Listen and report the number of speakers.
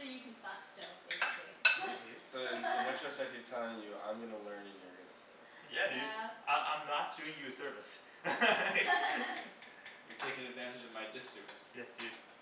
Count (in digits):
4